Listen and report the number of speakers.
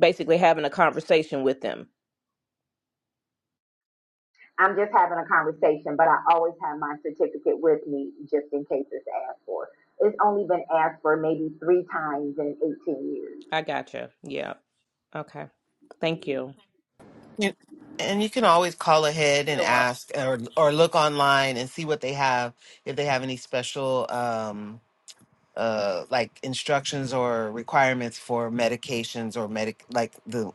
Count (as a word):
three